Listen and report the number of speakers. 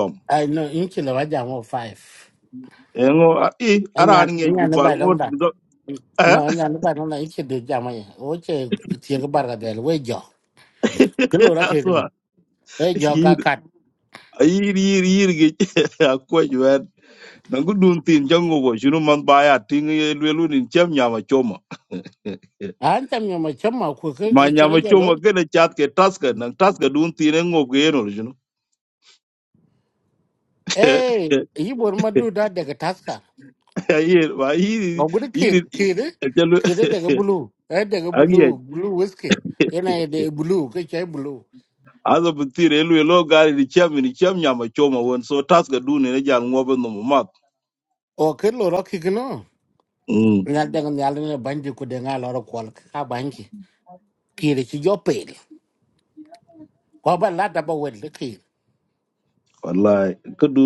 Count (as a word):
two